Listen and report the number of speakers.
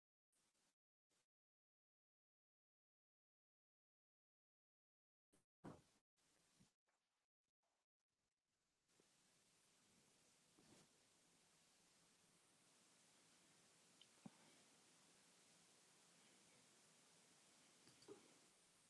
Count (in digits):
0